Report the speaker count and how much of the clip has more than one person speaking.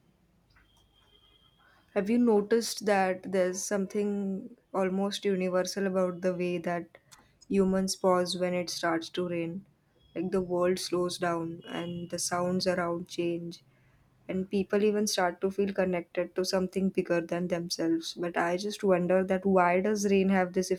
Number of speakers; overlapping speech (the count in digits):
1, no overlap